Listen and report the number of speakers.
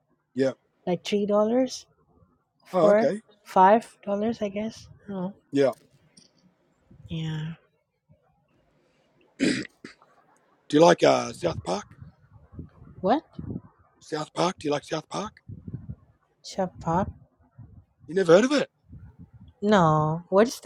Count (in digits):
2